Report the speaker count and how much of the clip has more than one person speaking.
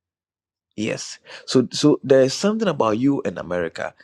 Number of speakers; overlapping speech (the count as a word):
one, no overlap